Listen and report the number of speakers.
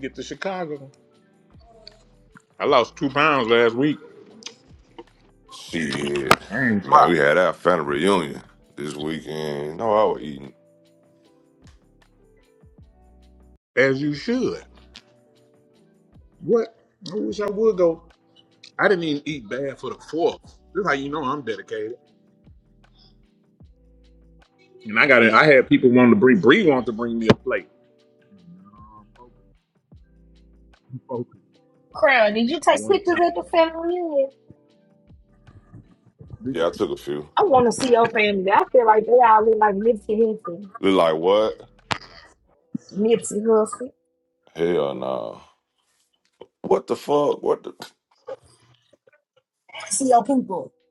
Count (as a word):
three